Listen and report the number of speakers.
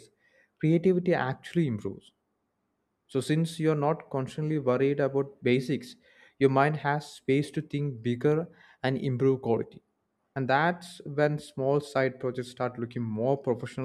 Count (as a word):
one